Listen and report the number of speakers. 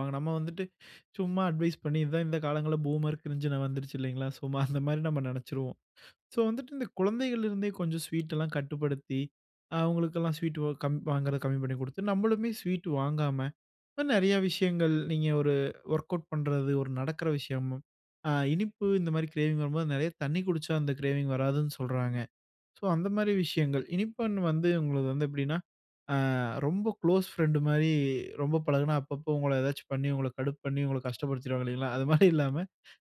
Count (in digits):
1